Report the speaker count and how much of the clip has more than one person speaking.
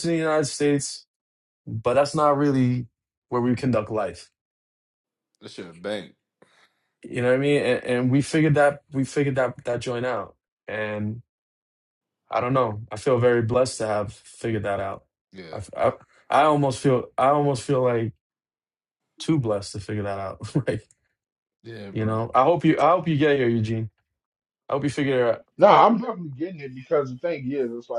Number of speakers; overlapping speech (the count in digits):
3, about 1%